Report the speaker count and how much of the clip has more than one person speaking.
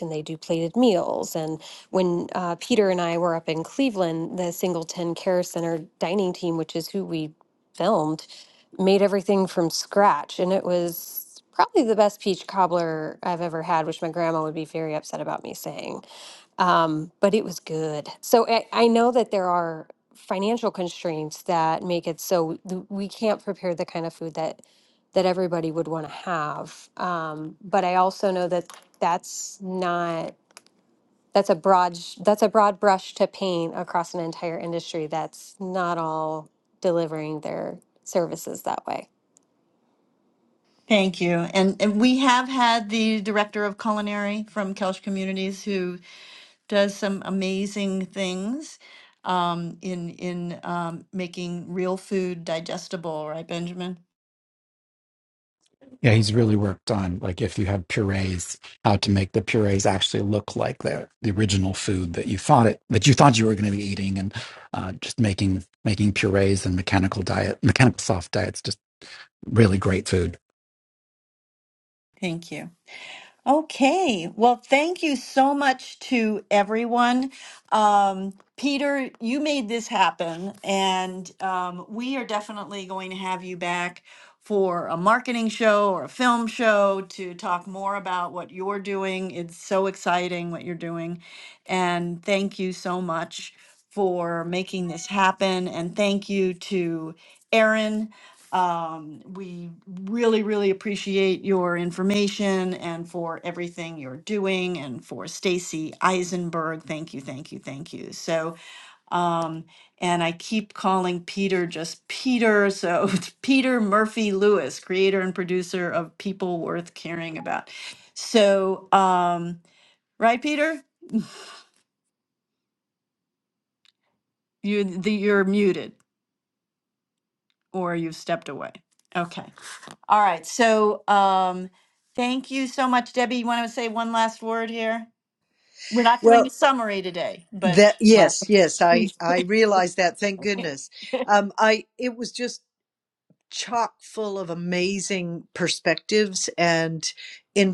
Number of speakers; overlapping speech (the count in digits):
4, about 1%